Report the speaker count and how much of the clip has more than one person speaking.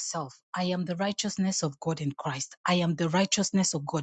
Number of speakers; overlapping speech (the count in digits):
1, no overlap